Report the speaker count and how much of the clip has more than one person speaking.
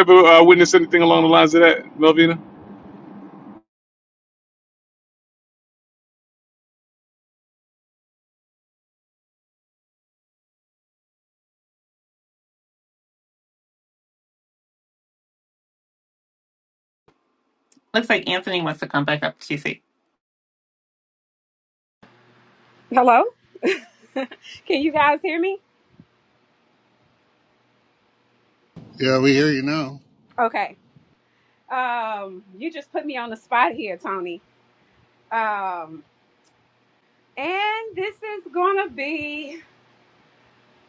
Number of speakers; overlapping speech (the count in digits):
4, no overlap